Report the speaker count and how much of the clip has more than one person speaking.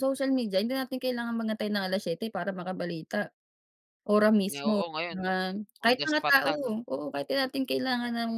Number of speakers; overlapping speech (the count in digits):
2, about 18%